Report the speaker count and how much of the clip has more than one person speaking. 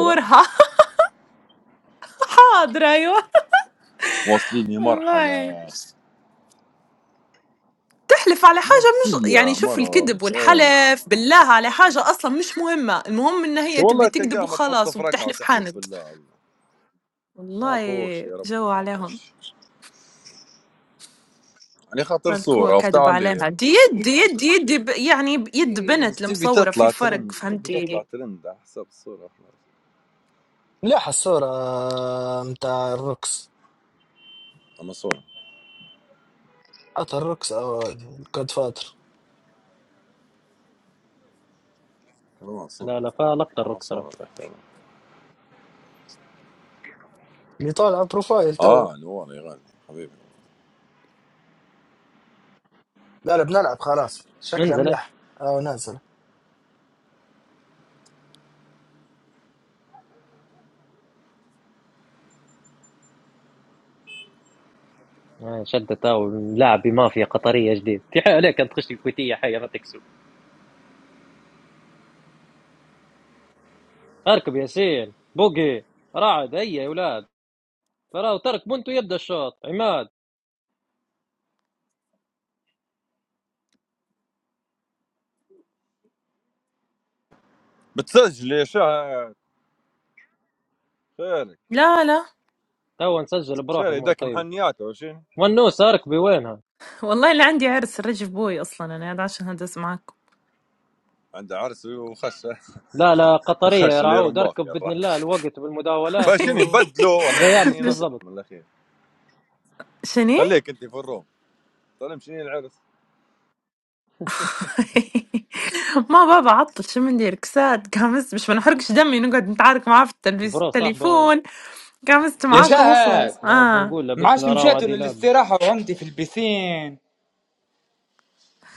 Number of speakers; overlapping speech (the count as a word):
five, about 13%